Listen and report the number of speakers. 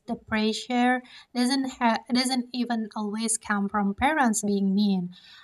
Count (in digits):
1